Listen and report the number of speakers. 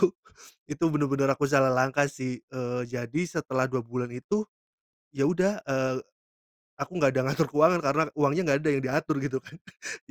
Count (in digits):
1